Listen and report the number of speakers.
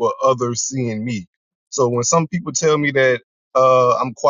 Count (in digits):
1